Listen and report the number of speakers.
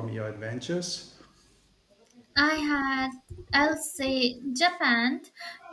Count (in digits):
2